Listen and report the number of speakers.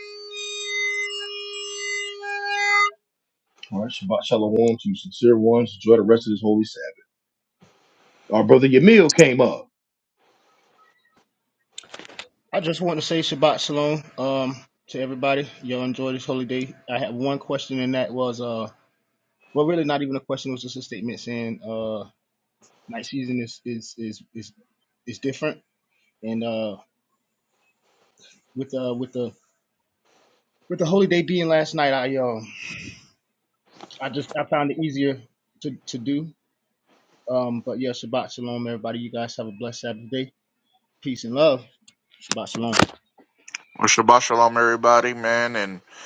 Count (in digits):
3